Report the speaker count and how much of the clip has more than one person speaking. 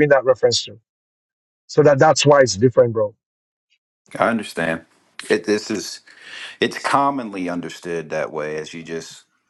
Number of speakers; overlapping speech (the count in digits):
2, no overlap